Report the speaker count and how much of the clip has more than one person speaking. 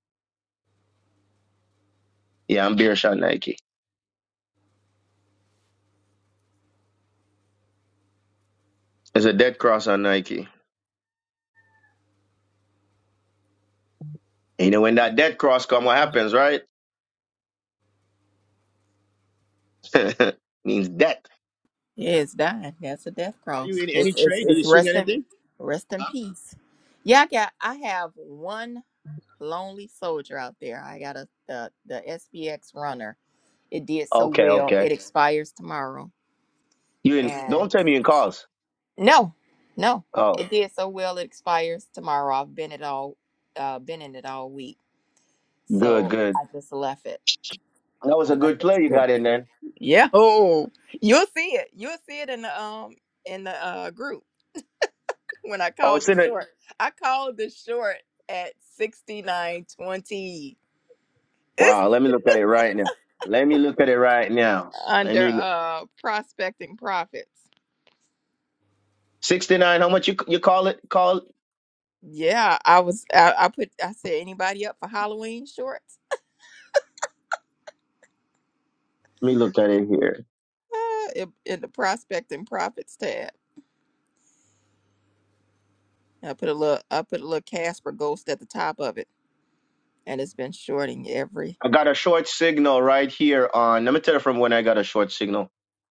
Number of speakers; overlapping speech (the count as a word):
two, about 5%